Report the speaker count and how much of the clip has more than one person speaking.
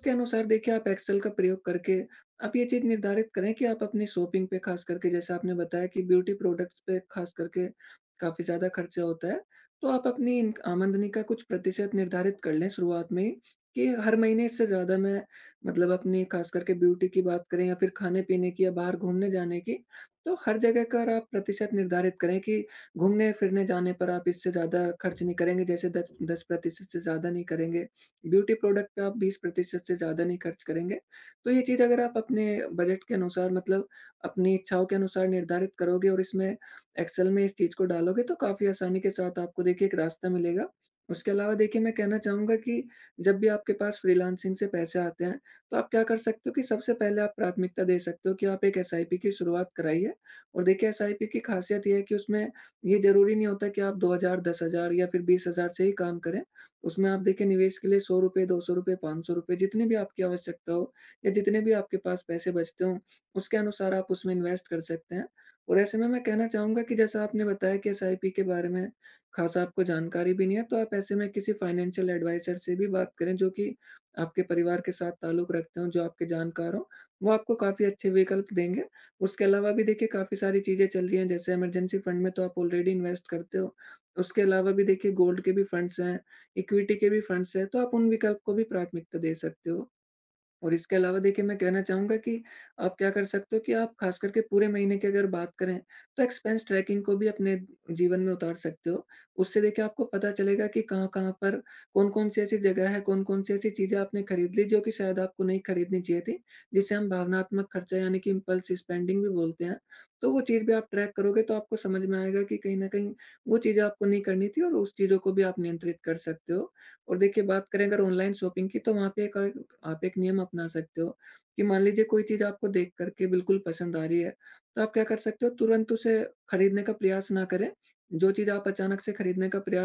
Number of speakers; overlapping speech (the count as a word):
one, no overlap